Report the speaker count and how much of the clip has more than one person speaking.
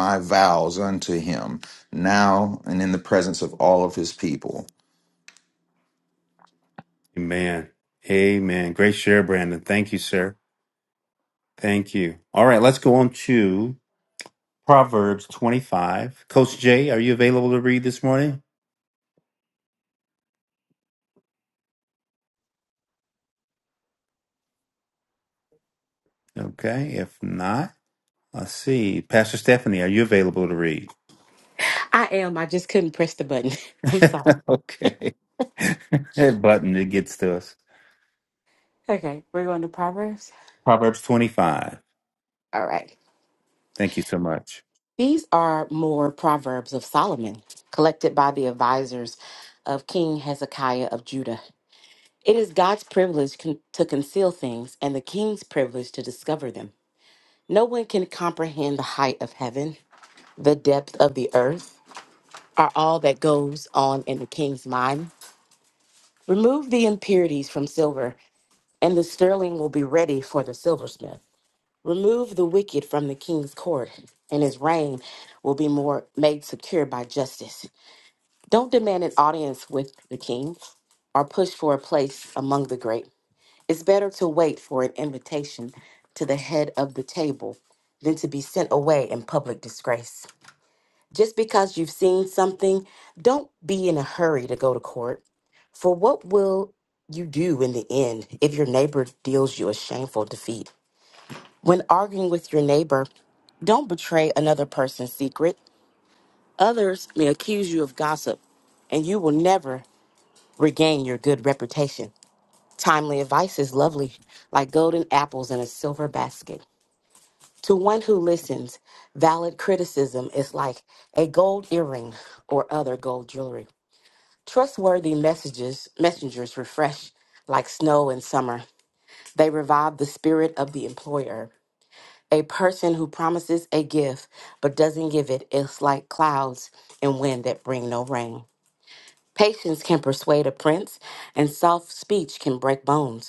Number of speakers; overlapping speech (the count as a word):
three, no overlap